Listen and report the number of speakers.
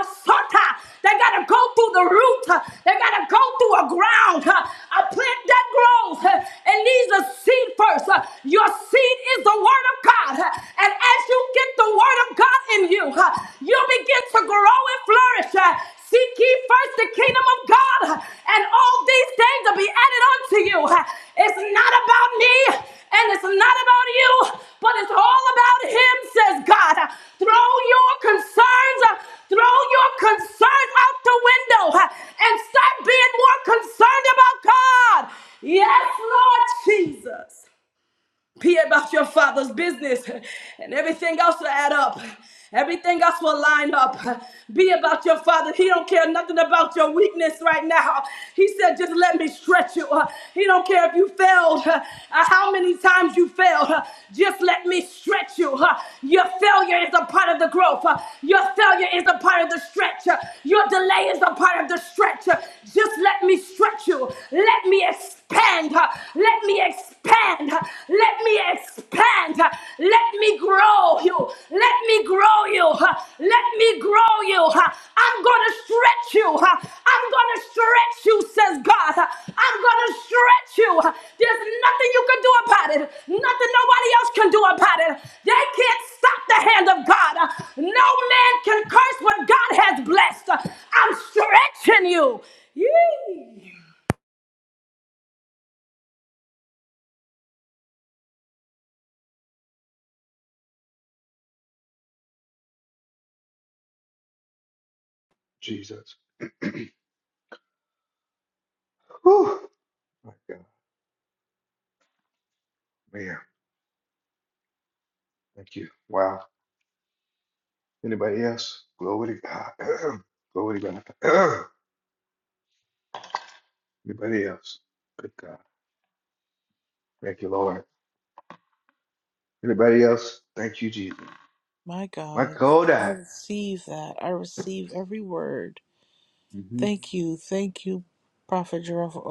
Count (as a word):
three